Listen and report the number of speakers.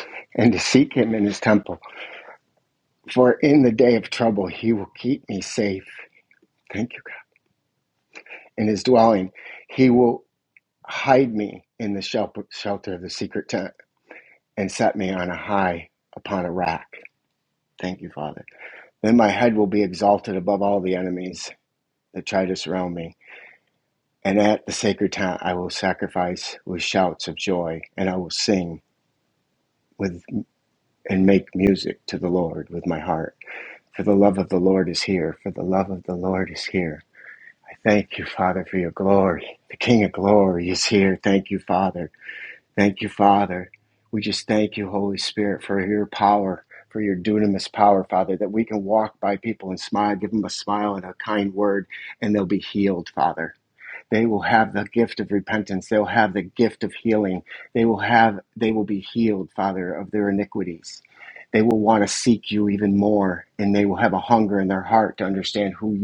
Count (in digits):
1